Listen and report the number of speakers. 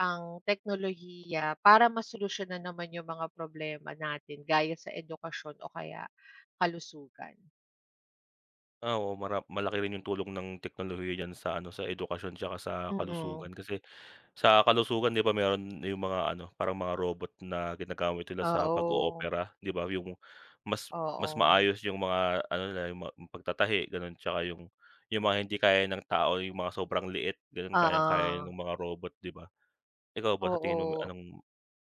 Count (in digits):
2